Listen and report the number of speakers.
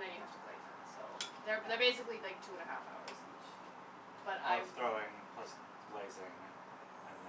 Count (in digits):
2